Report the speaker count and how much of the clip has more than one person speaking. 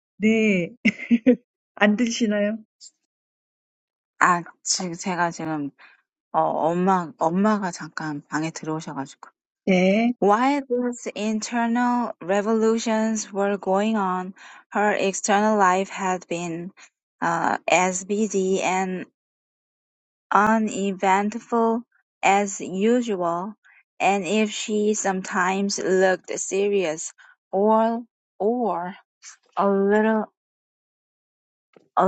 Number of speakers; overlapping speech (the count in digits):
2, no overlap